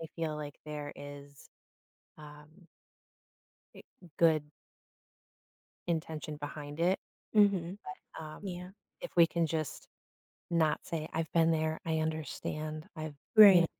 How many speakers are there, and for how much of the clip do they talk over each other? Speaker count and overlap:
two, about 2%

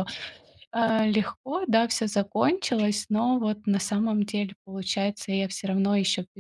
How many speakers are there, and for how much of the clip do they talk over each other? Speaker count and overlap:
one, no overlap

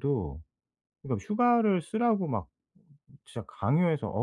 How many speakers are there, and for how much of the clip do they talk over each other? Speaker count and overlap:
one, no overlap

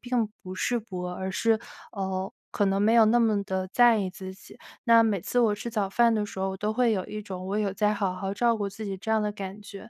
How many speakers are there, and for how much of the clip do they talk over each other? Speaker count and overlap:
one, no overlap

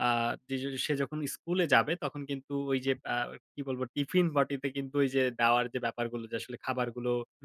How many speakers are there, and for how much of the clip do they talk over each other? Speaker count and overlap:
one, no overlap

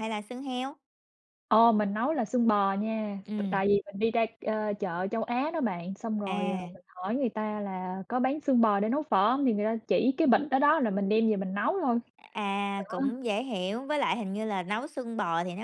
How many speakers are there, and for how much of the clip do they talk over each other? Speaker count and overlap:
two, about 5%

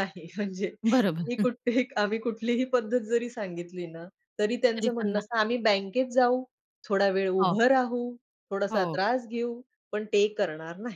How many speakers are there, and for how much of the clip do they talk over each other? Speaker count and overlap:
two, about 9%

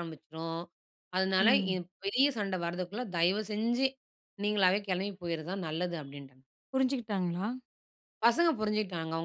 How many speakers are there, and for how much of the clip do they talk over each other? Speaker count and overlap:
two, about 4%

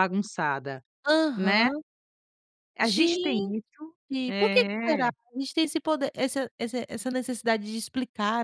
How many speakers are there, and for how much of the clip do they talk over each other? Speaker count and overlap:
two, about 21%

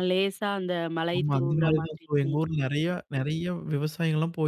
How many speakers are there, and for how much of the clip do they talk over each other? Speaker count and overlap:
two, about 32%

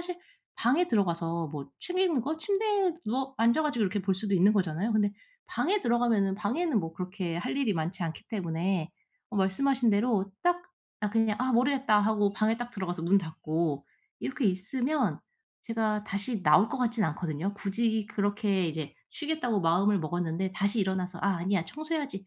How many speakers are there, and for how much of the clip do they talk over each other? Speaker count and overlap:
one, no overlap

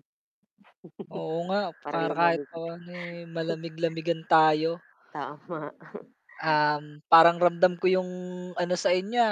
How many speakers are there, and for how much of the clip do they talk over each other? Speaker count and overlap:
two, about 8%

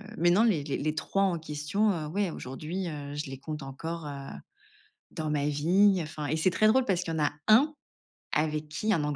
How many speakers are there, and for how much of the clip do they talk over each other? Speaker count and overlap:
one, no overlap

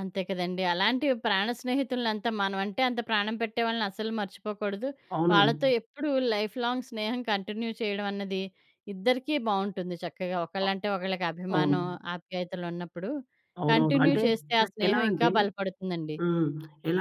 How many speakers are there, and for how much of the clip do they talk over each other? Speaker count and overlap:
two, about 12%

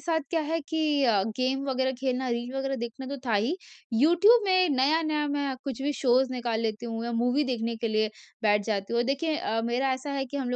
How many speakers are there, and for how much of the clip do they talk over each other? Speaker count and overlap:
one, no overlap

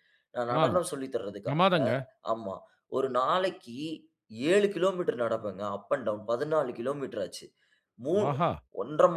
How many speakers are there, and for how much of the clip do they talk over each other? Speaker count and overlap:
two, about 3%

